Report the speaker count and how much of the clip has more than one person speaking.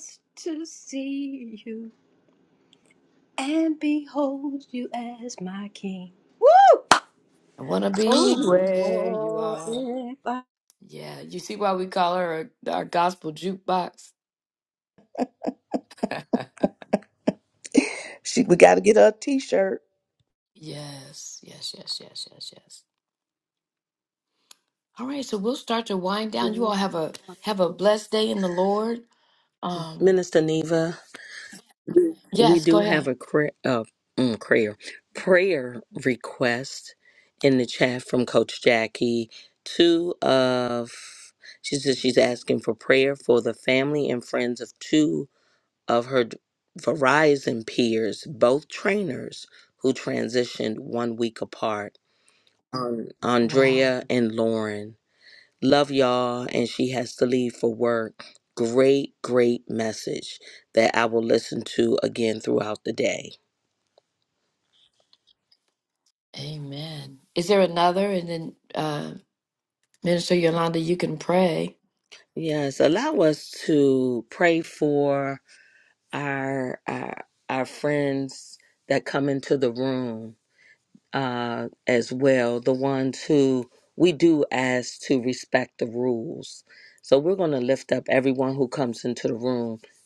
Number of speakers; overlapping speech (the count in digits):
4, about 3%